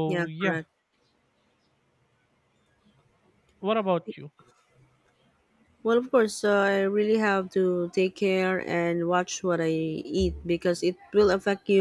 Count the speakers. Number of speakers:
two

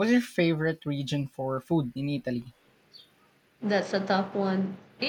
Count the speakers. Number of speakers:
two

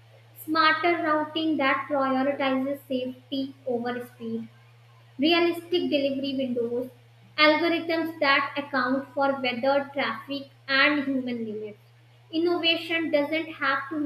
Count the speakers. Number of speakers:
one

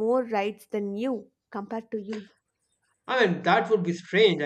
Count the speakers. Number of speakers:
two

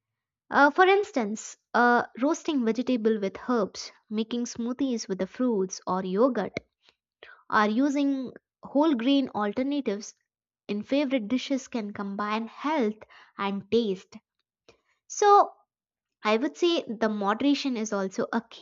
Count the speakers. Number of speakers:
one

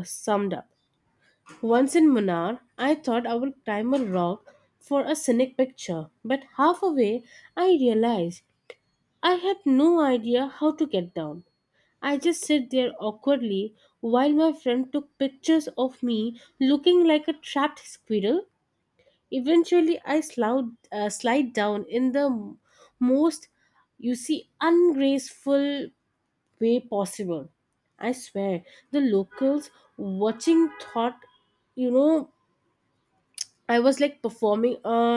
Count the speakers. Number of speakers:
one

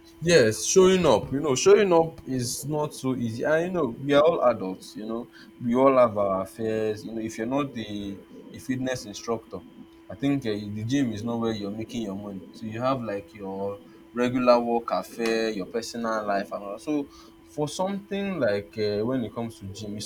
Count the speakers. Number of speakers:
one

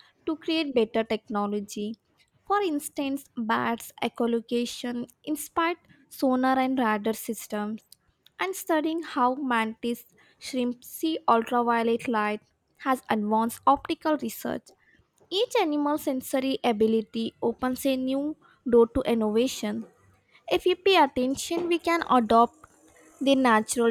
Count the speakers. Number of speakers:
one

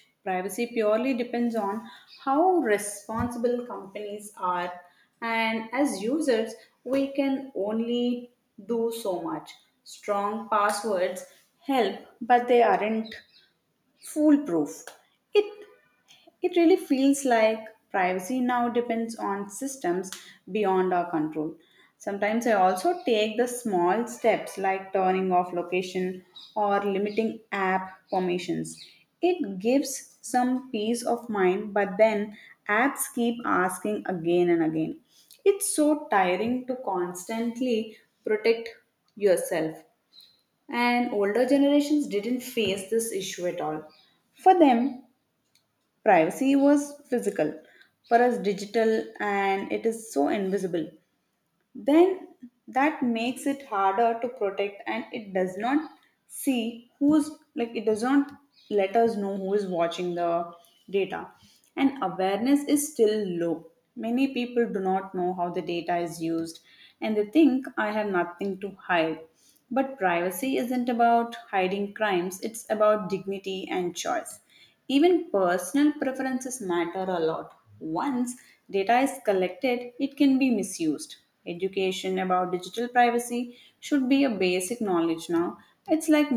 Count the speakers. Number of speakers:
one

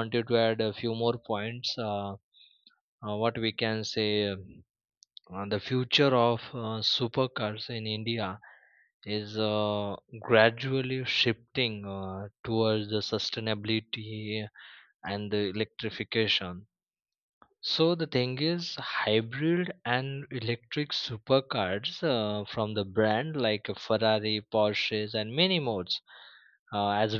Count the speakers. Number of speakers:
one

